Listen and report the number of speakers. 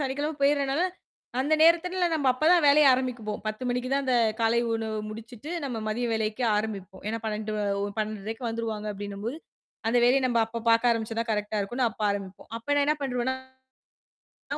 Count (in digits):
1